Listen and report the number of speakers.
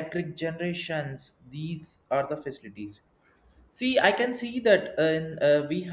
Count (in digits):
1